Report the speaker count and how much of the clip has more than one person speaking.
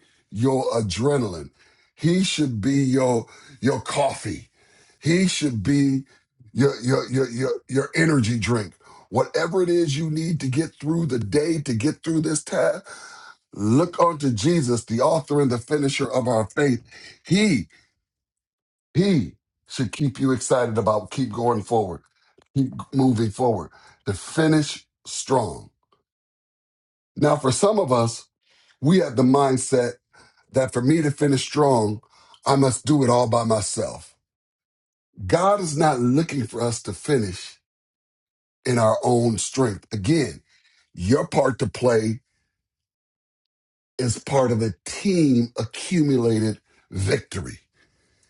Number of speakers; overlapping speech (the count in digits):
1, no overlap